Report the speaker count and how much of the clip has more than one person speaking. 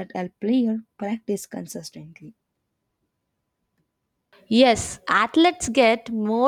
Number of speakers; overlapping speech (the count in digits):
2, no overlap